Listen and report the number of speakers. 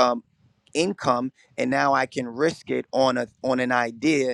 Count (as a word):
one